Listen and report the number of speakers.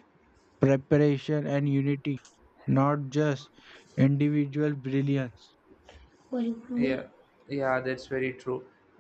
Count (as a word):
two